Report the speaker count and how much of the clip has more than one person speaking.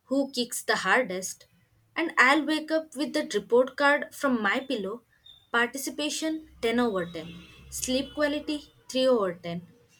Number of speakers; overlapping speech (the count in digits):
1, no overlap